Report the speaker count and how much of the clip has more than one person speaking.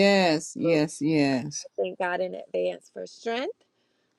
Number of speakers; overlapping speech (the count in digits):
2, about 4%